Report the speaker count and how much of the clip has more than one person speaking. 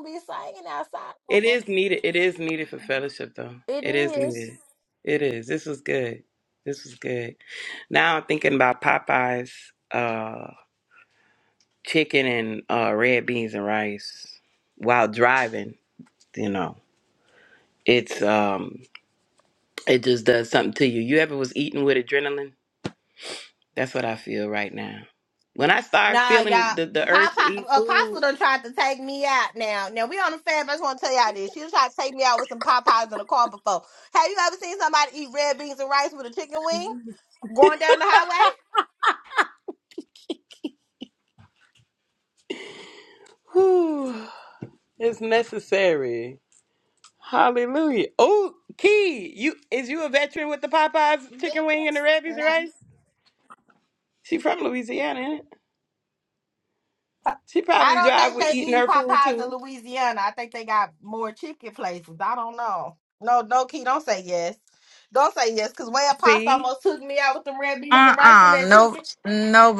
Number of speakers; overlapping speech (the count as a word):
three, about 9%